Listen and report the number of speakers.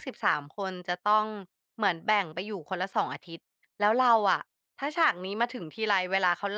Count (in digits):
1